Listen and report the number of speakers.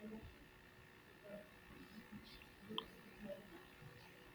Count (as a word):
zero